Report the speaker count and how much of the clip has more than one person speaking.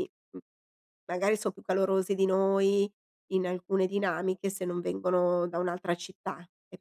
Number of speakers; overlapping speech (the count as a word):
one, no overlap